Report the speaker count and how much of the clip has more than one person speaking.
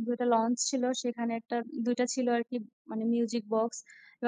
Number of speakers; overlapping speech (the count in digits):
1, no overlap